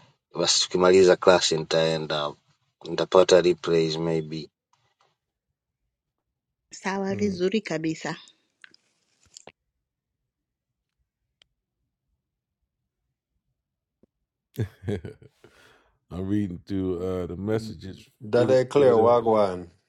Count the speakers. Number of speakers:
four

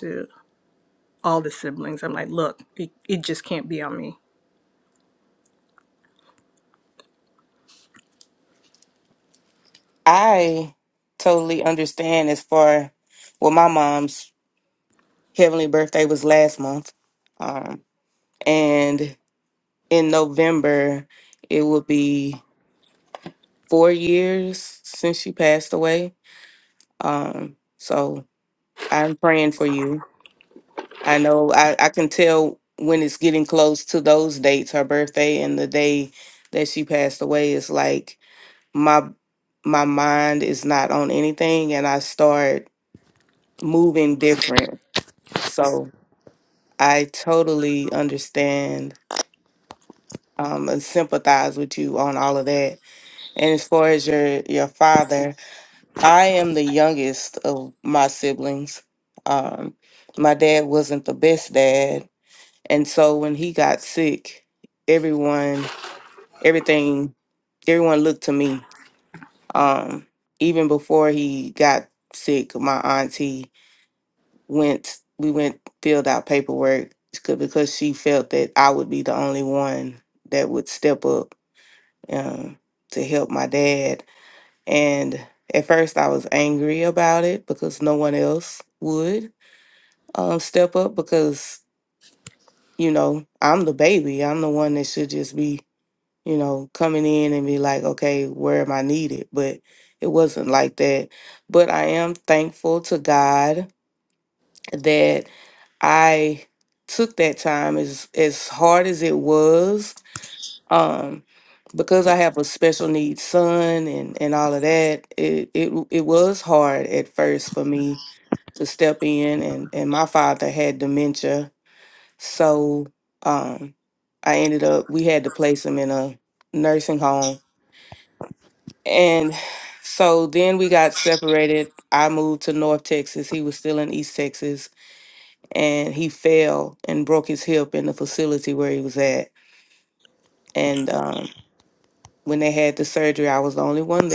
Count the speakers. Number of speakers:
two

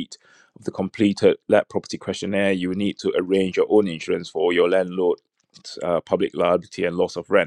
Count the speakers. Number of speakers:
one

